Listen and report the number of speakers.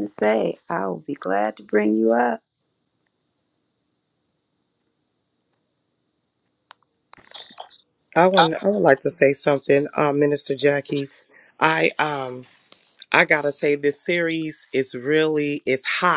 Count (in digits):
2